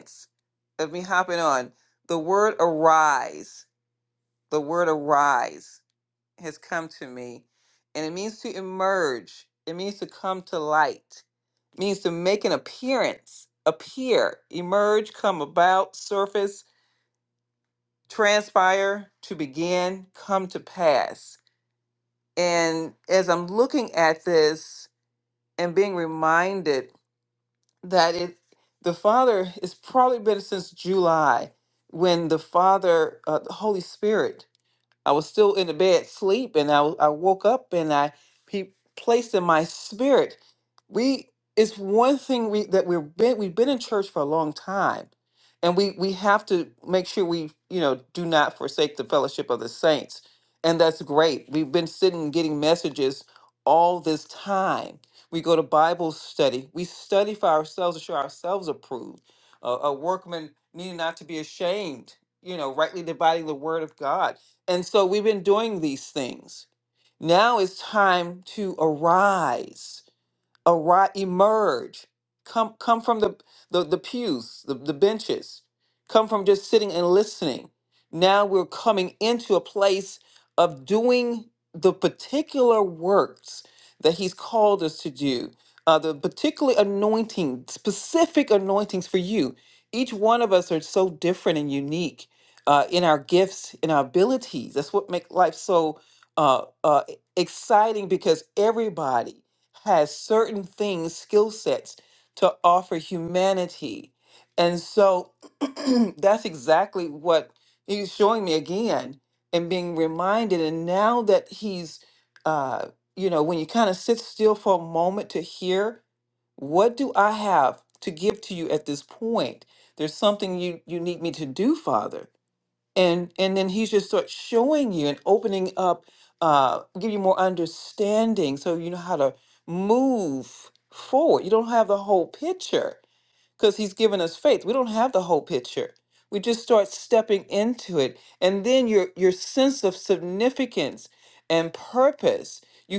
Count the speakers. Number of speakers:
one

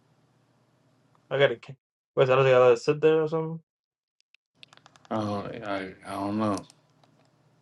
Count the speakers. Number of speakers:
two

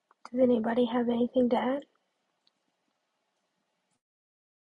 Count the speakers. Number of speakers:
one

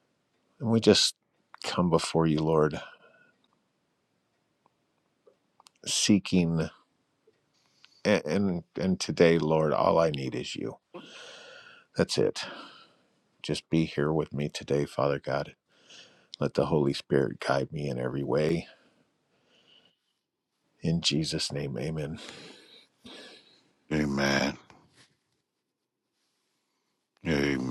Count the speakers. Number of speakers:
two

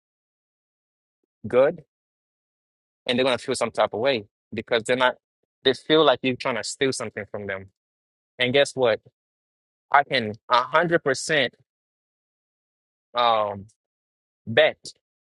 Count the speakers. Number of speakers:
one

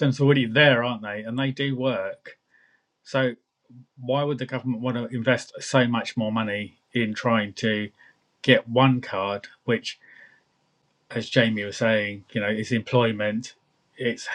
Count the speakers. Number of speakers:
one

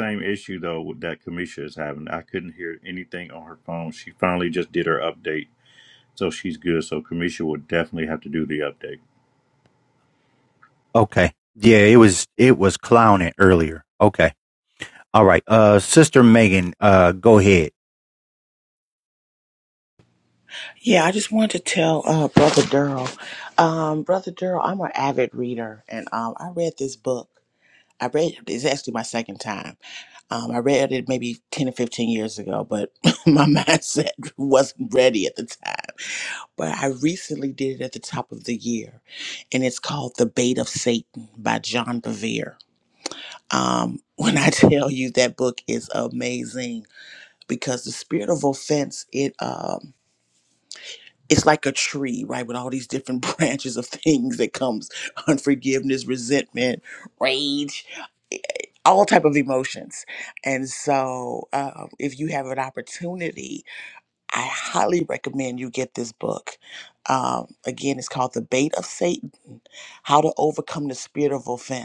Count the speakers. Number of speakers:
three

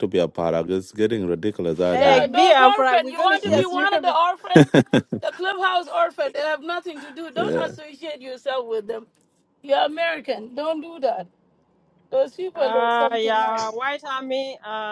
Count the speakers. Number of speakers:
three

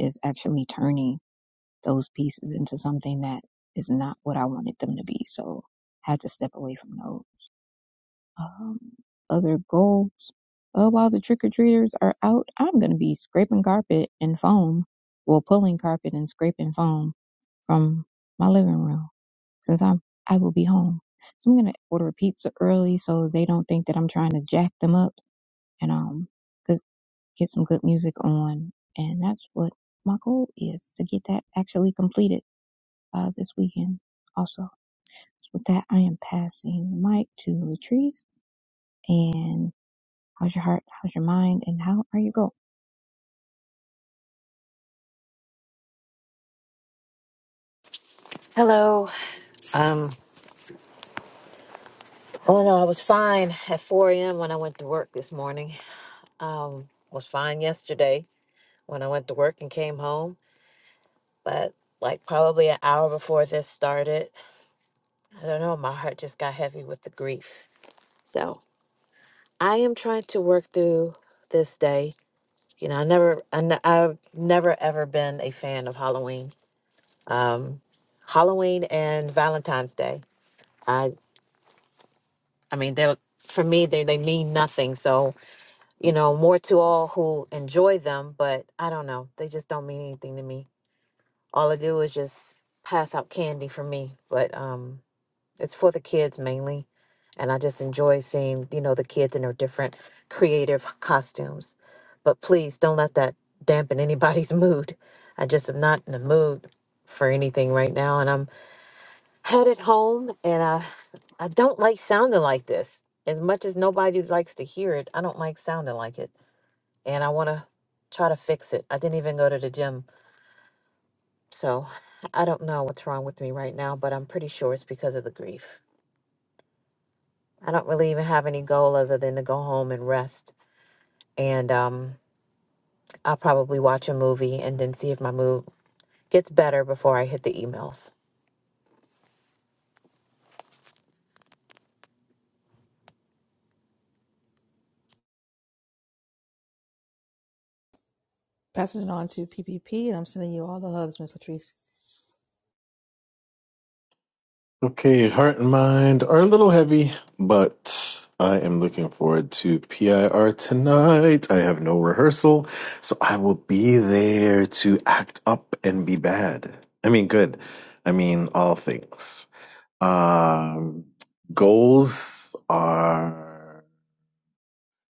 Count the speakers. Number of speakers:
four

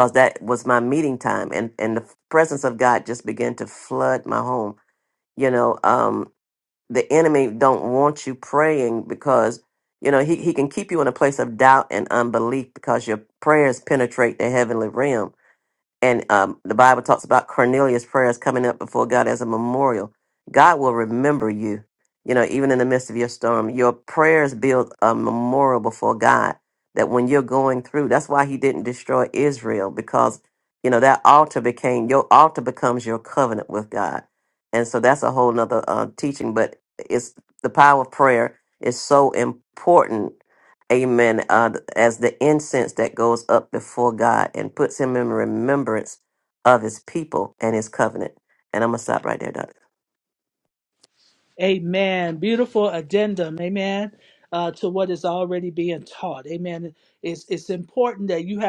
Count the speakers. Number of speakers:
two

